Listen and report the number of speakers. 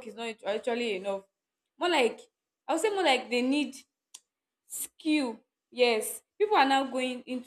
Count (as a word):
one